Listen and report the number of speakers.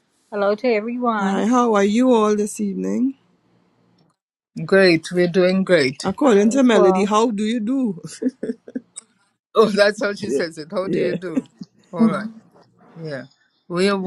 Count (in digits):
3